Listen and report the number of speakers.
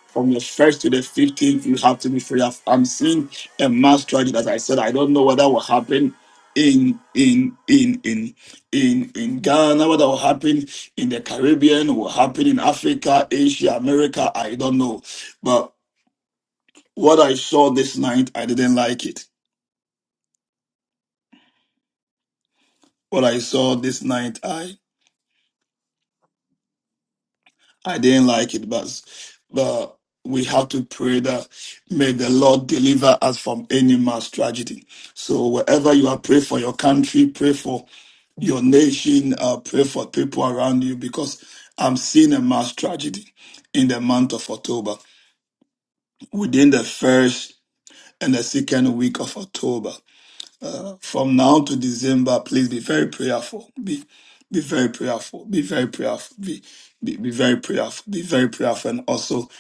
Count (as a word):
one